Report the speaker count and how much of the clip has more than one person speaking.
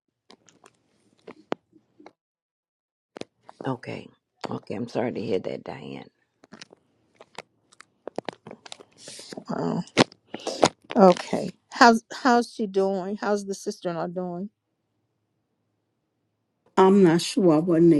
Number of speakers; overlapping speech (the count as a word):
three, no overlap